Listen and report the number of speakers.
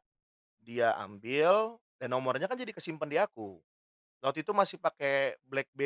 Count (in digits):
1